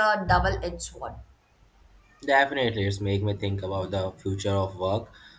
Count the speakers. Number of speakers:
two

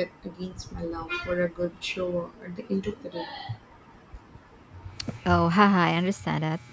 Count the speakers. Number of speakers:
two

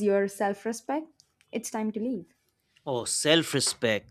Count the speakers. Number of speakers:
two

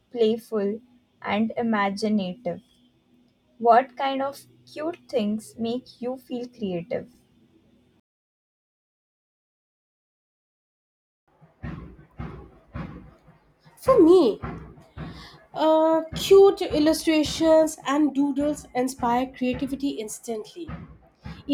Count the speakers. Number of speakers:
two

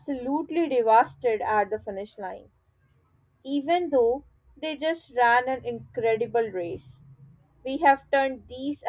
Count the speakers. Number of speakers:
one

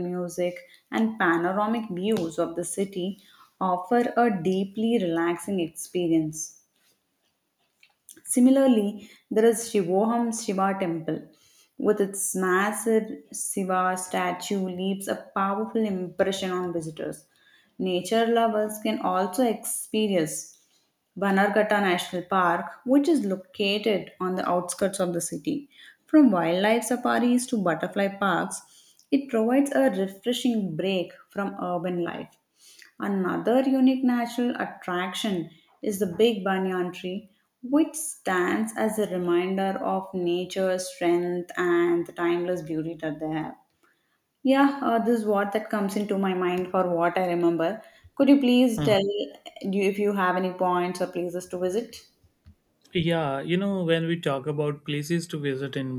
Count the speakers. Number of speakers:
two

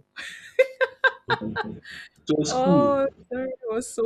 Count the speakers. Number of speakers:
two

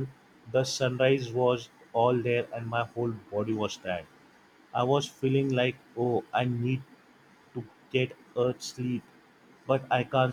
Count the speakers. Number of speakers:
one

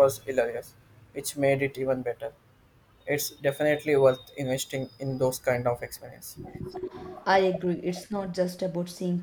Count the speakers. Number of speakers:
two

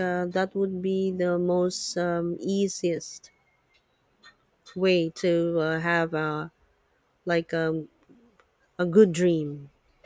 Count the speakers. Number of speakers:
one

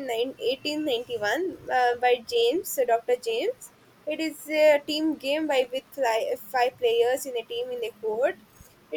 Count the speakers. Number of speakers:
one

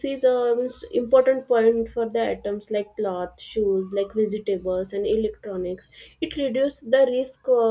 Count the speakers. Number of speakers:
one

